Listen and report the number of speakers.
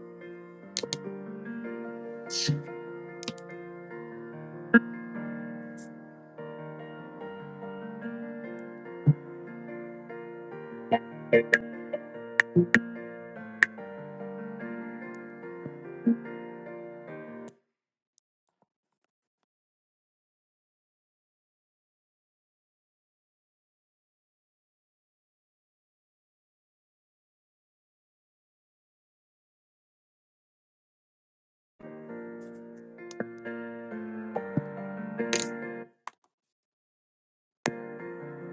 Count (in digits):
0